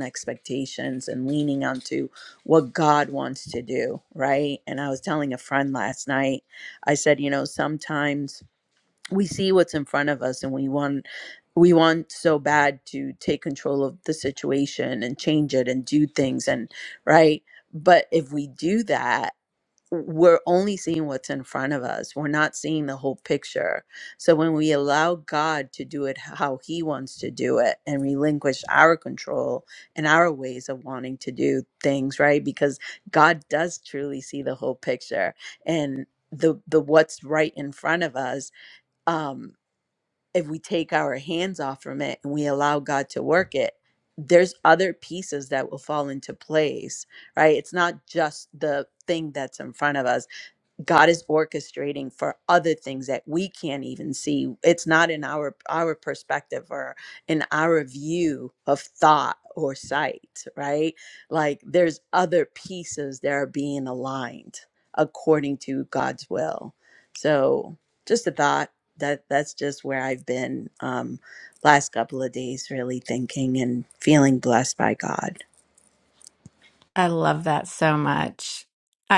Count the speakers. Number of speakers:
2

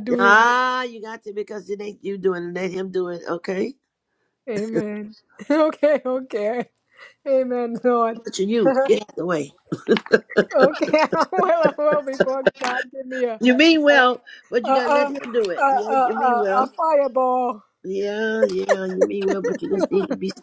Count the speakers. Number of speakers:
2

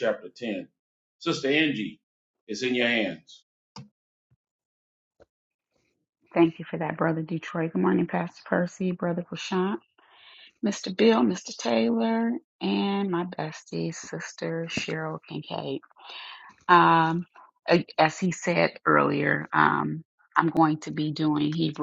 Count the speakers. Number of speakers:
2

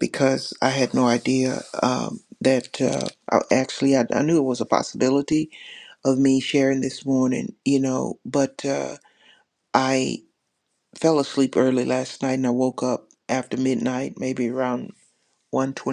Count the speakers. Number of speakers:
1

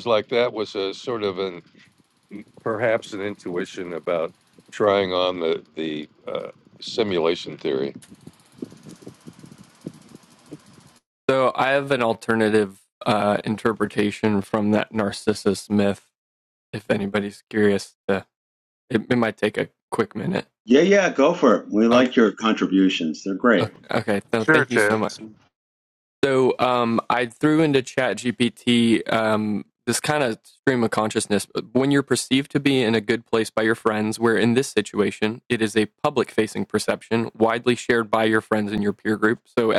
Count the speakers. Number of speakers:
3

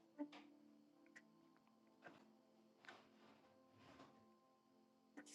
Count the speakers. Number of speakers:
0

